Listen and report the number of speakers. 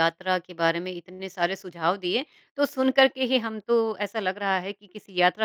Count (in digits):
1